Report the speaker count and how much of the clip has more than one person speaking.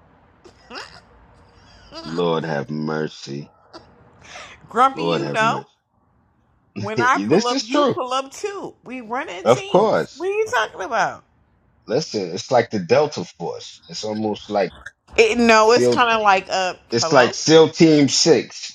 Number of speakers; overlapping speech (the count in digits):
2, about 15%